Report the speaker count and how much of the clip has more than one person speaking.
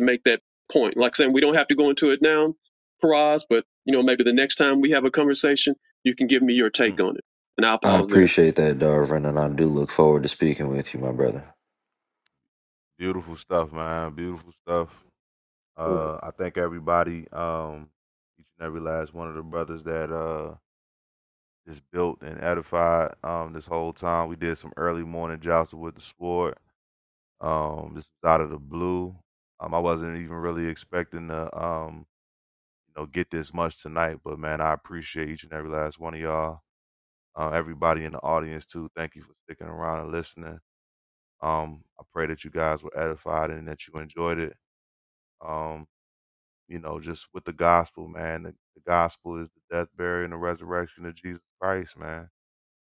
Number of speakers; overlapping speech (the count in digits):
3, about 1%